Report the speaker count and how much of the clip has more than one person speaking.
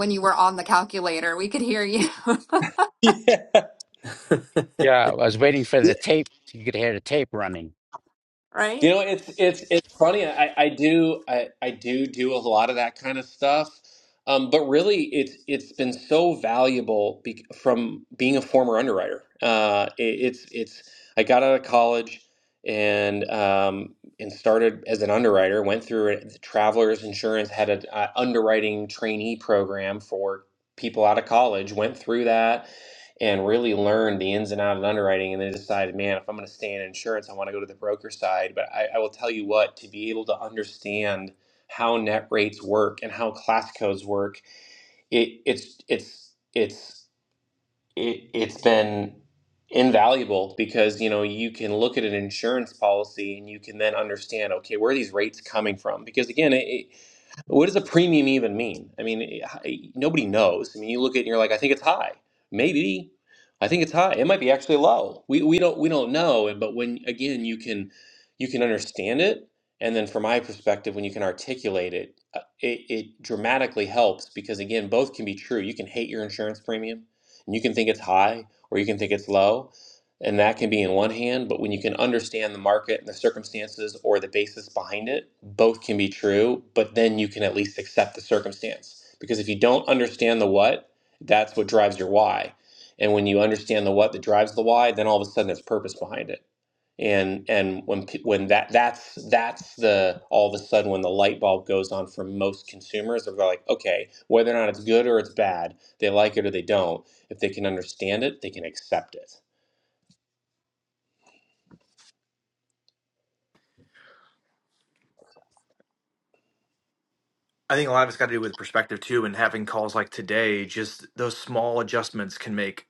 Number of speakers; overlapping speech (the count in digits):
4, no overlap